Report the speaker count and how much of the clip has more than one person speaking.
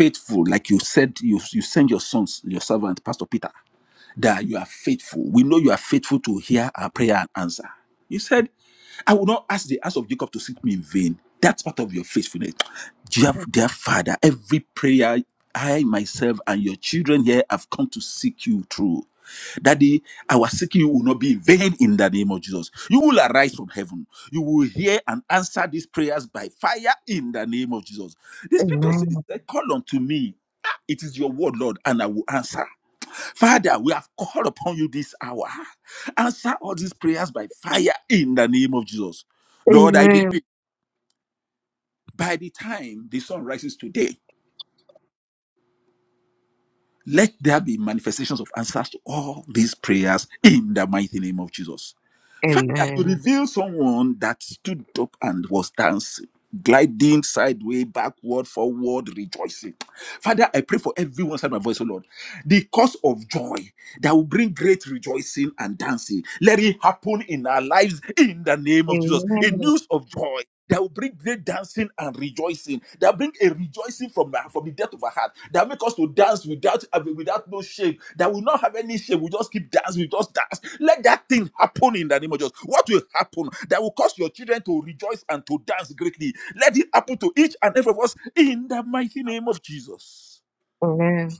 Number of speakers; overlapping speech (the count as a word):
two, about 3%